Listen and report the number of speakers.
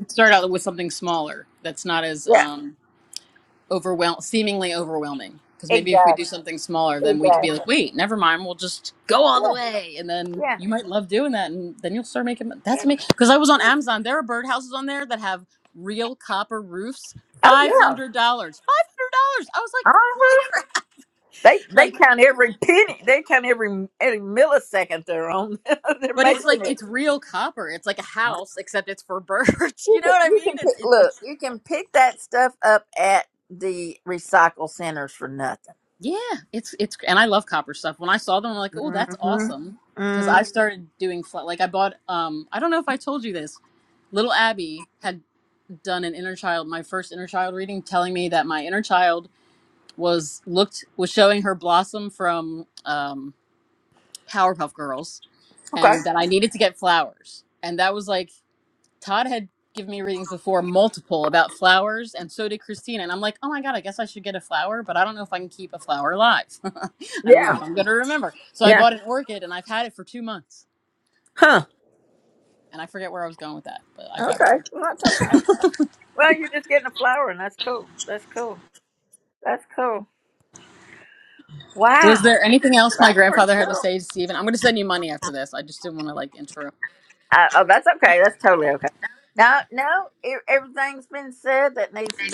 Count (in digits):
2